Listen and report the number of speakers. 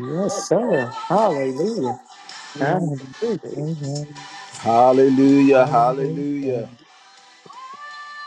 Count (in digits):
3